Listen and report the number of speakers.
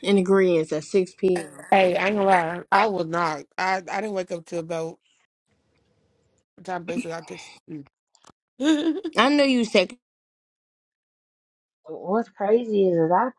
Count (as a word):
three